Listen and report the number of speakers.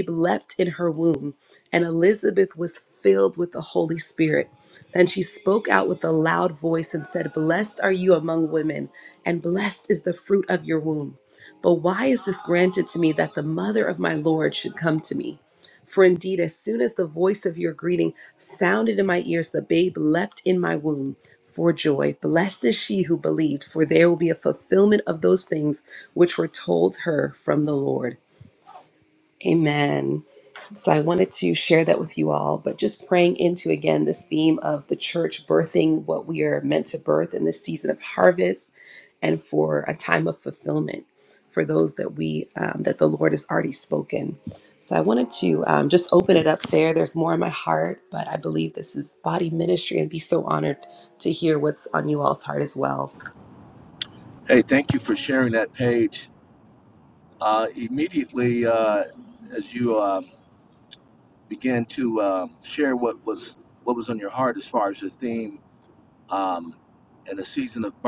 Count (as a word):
two